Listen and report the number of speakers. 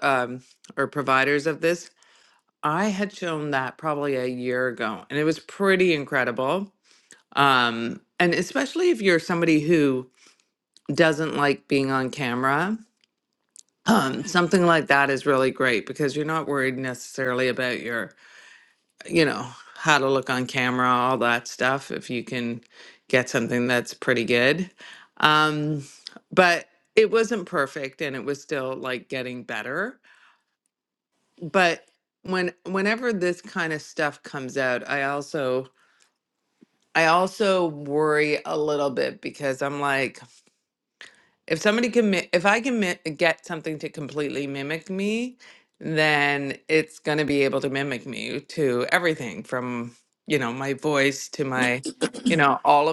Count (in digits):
1